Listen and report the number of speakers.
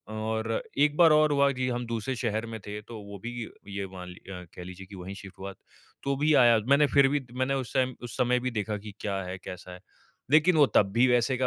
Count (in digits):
1